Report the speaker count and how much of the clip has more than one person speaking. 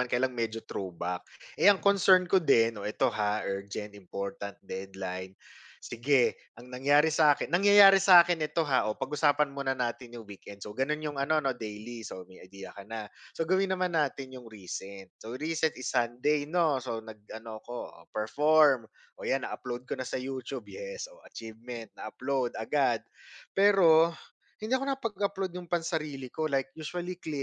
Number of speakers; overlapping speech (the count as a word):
one, no overlap